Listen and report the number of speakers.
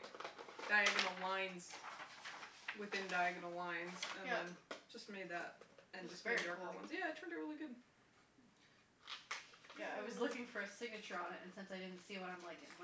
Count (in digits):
2